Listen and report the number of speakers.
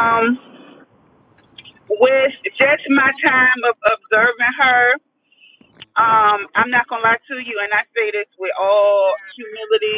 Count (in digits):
1